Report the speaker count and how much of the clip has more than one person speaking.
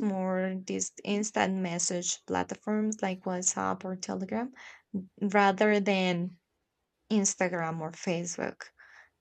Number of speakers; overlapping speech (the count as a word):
one, no overlap